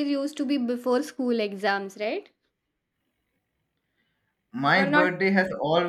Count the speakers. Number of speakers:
2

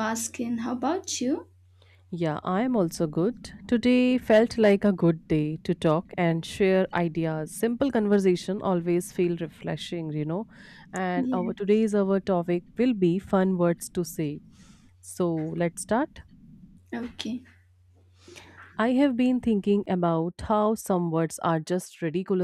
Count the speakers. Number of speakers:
2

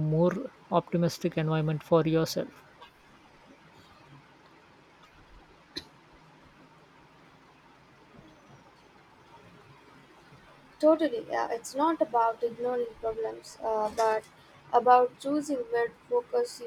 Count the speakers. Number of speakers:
2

